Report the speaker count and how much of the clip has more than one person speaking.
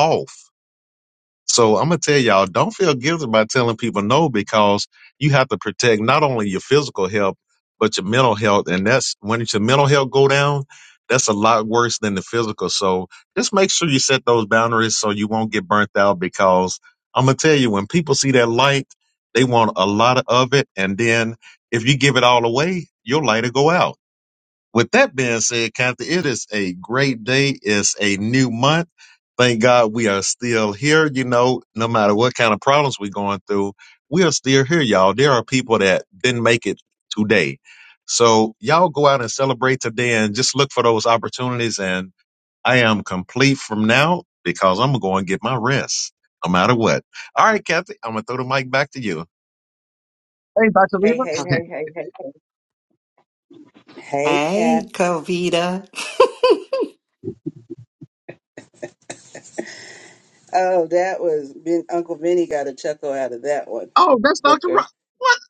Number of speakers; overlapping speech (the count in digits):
3, about 2%